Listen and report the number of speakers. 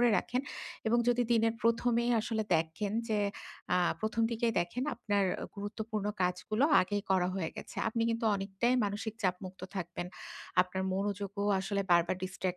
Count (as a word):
one